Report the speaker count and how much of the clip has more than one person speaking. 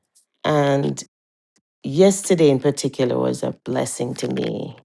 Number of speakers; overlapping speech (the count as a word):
one, no overlap